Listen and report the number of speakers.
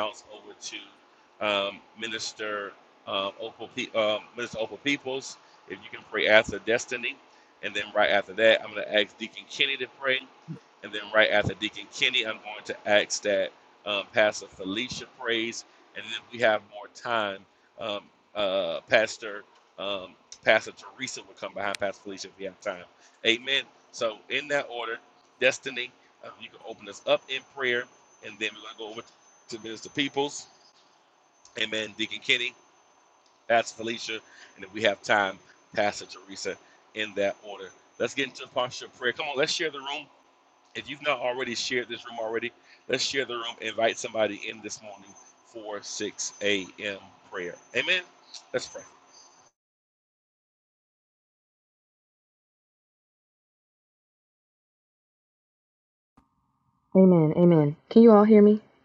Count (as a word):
two